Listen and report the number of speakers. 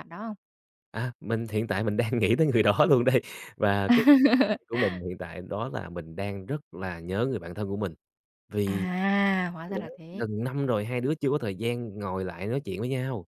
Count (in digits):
2